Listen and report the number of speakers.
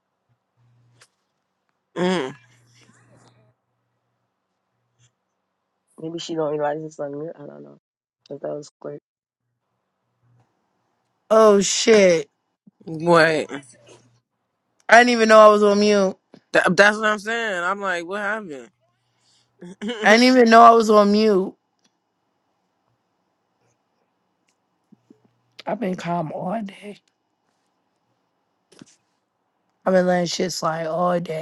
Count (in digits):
3